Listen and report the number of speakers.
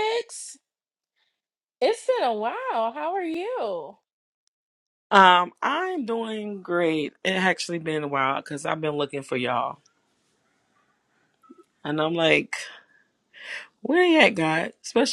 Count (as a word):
two